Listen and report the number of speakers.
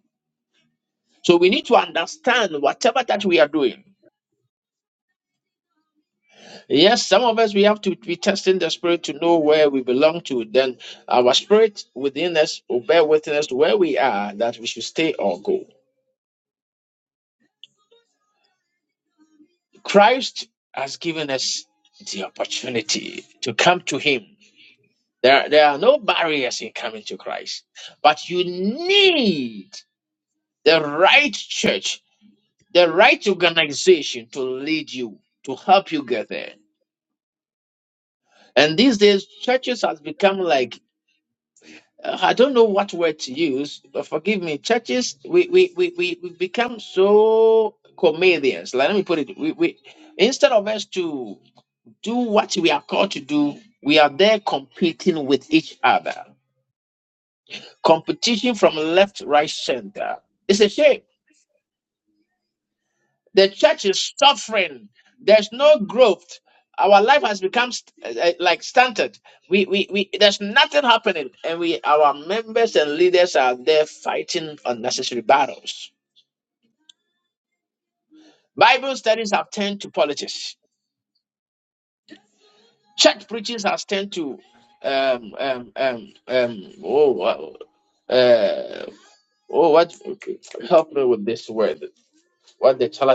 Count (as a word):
one